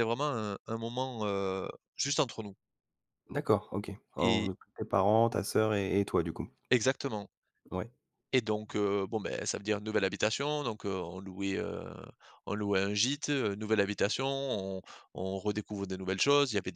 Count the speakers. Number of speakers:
2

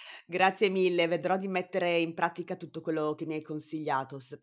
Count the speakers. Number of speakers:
1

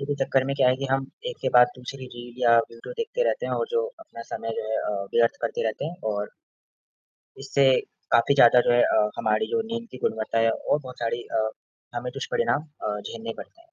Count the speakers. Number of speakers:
1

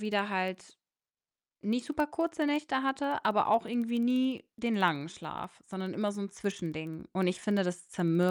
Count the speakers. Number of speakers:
1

